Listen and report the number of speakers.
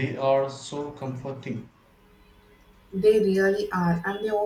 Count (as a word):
two